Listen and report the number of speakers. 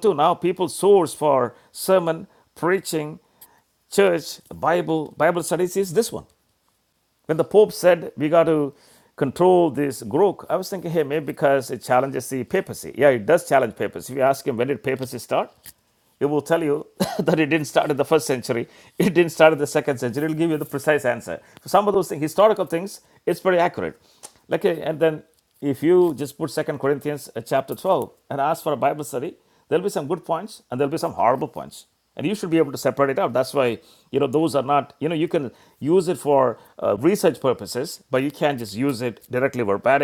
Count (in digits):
1